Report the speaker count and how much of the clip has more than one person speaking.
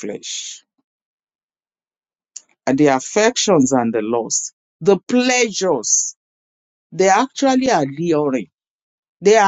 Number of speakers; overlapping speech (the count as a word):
one, no overlap